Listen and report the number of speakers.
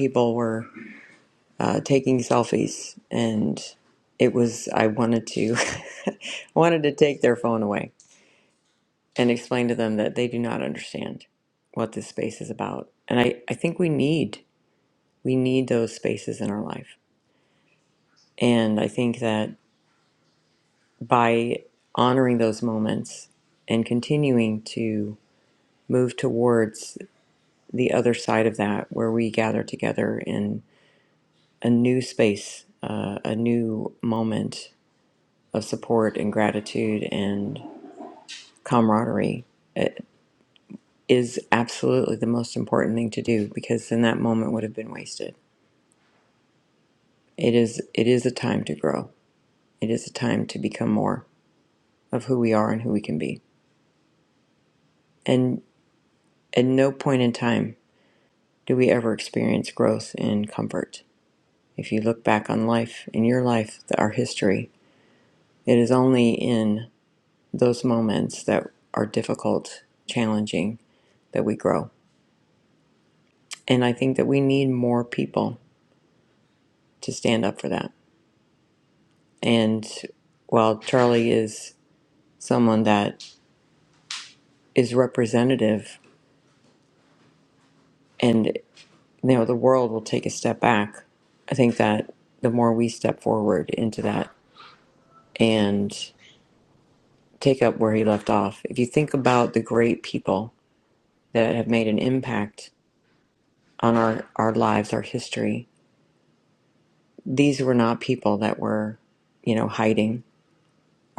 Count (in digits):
1